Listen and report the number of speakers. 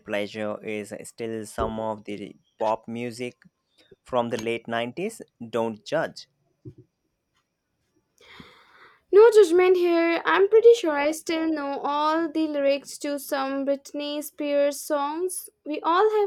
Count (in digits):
2